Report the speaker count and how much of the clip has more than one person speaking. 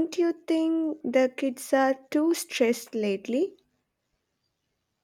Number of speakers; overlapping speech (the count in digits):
1, no overlap